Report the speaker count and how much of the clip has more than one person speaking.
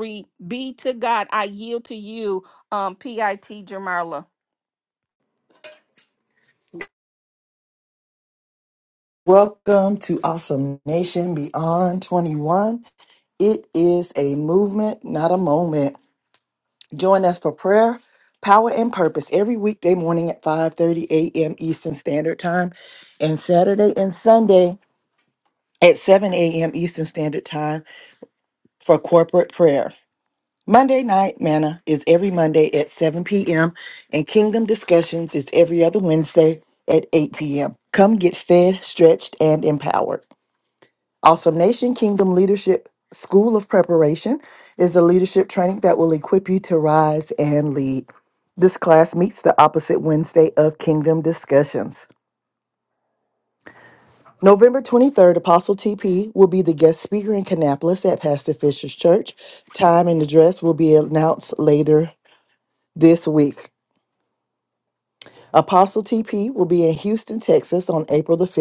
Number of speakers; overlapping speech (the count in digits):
2, no overlap